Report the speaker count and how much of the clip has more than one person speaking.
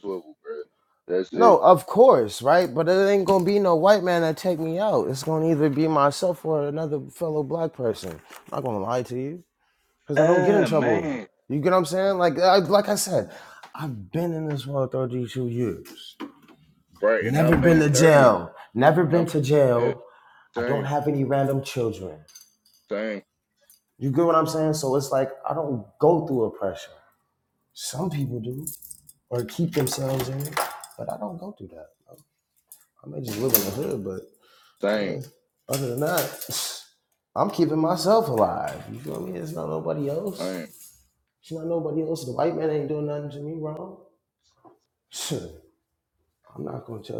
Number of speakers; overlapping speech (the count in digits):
2, about 6%